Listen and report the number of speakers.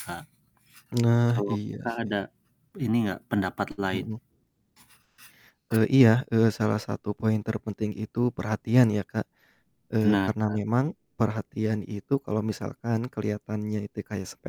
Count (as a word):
two